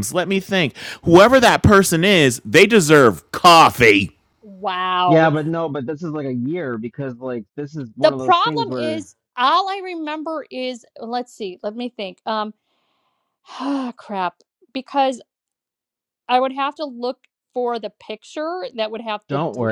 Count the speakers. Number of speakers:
3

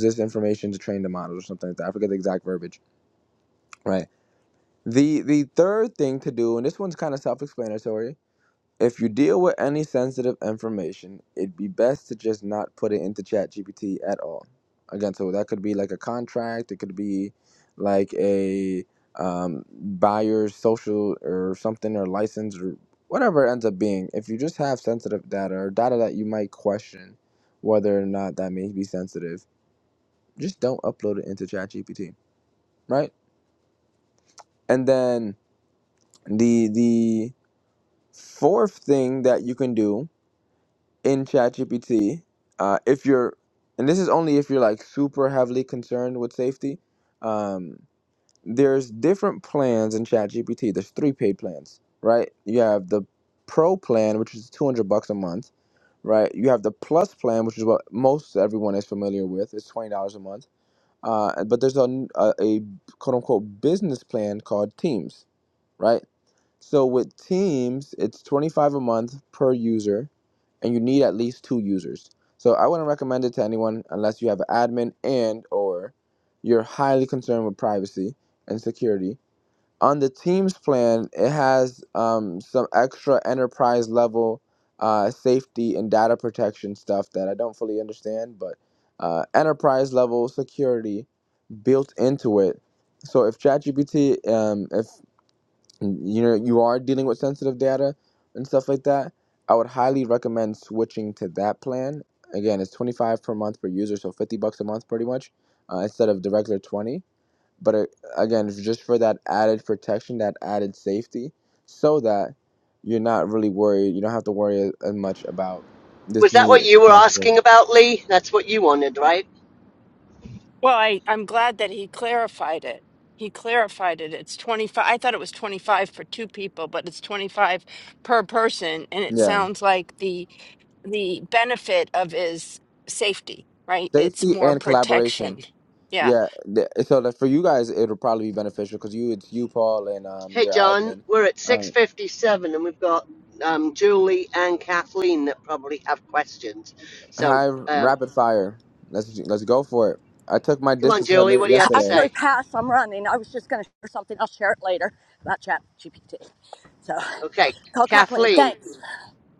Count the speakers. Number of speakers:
4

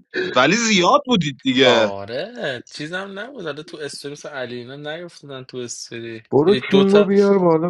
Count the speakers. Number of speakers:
3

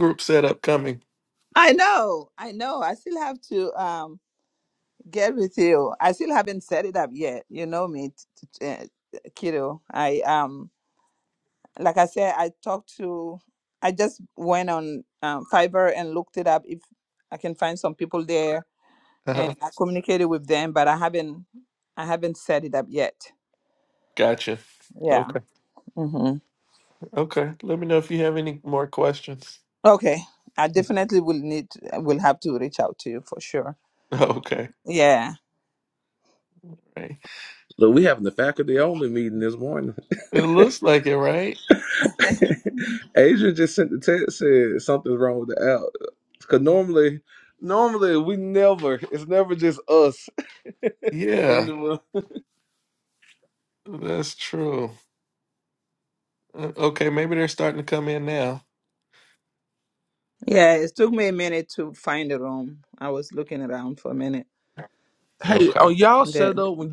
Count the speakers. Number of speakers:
3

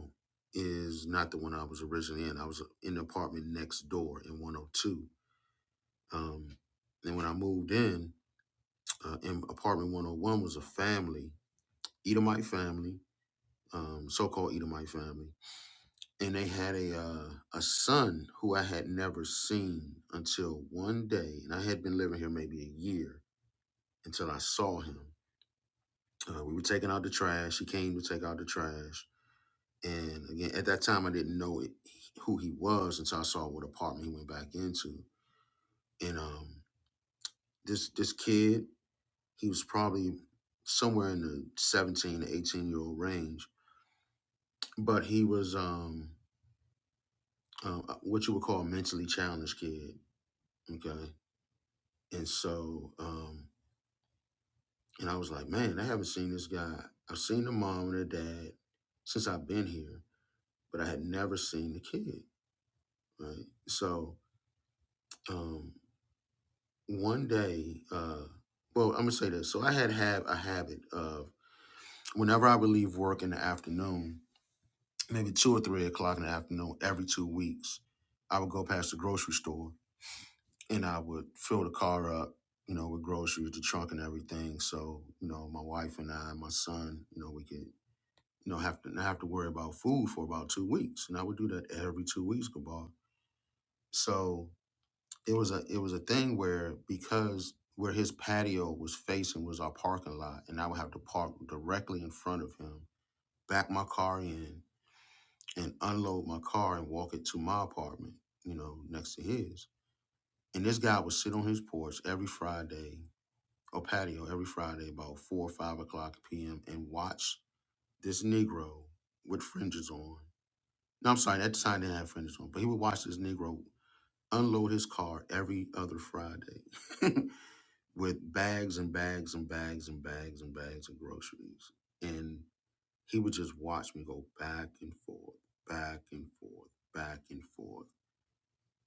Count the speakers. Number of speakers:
1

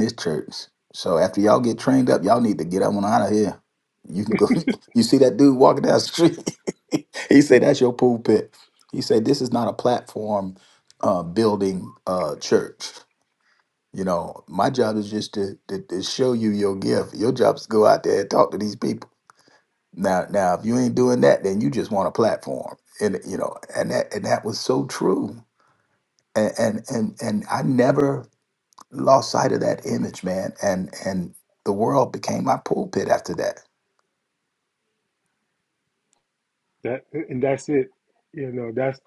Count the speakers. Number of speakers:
2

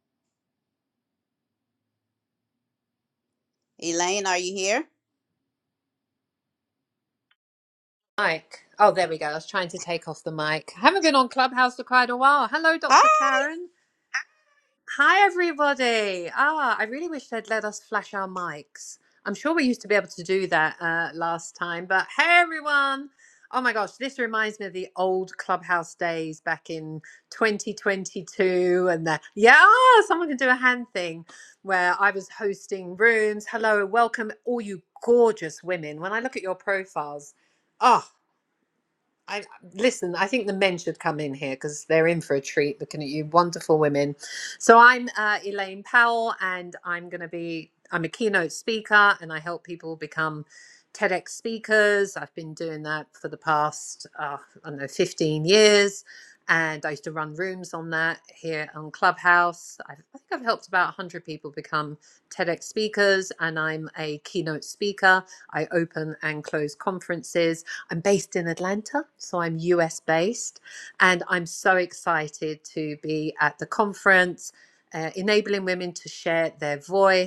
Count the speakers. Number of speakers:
2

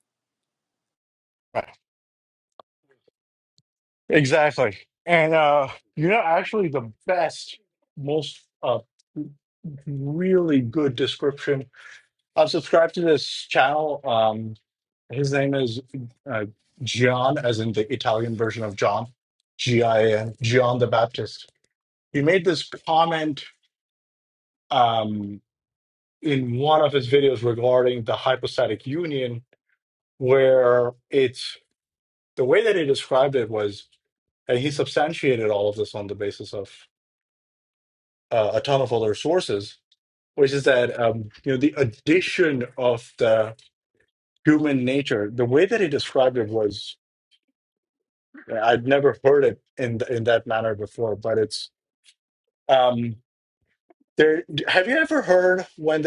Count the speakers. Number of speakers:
1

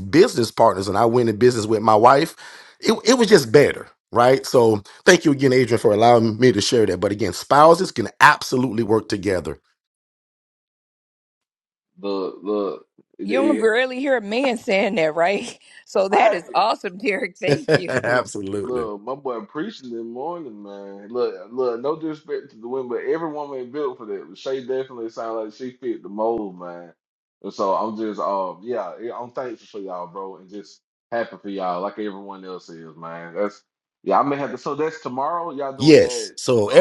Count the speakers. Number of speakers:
3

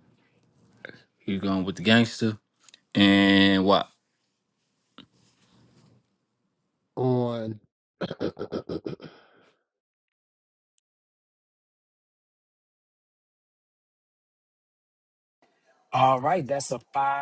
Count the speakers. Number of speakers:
3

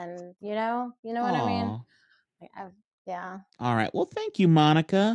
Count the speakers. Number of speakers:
2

